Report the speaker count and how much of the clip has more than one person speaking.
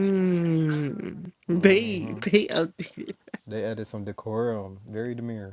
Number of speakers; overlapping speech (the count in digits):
2, no overlap